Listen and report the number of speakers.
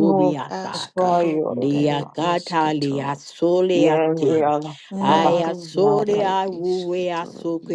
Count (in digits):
3